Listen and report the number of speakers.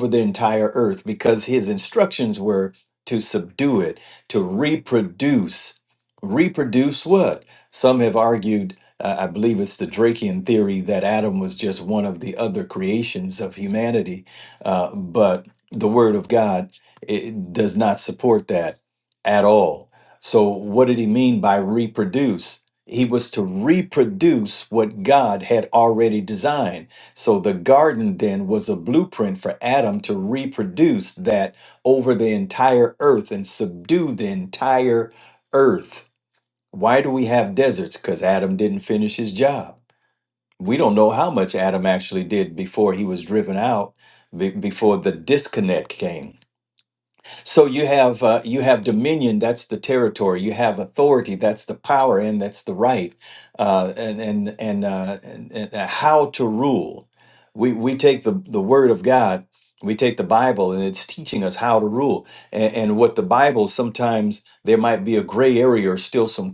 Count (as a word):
one